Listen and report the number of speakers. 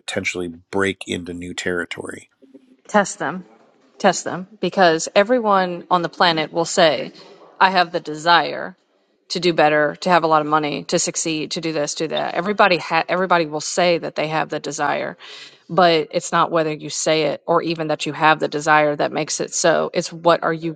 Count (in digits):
2